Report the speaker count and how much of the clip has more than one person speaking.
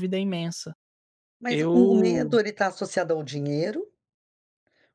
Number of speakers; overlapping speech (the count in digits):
2, about 17%